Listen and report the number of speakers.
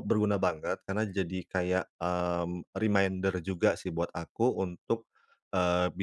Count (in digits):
1